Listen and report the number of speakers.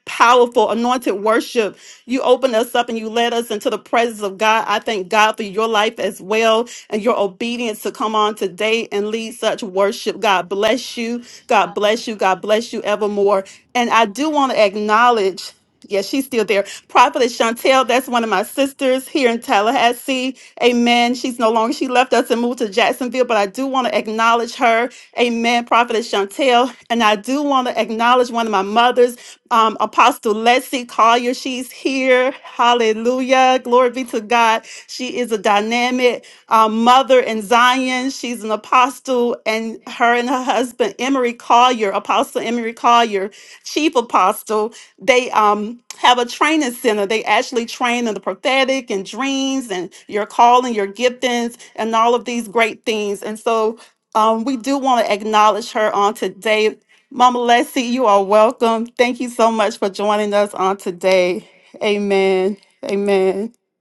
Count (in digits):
1